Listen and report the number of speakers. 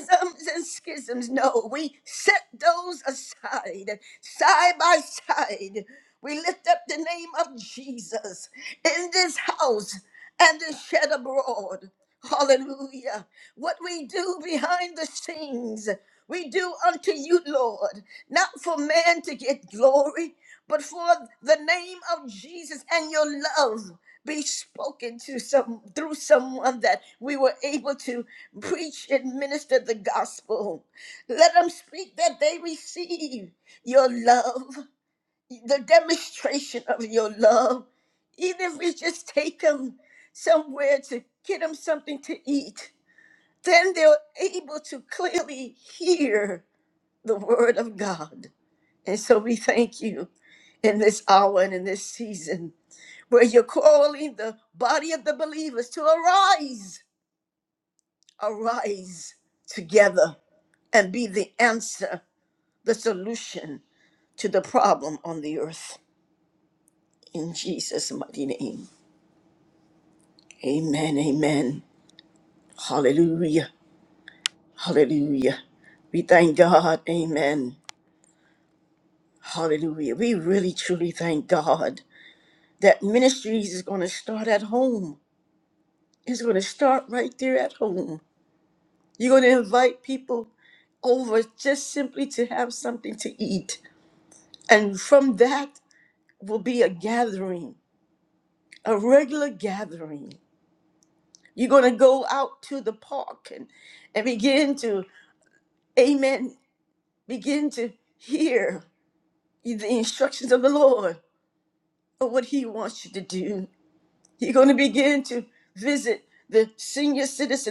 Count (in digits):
1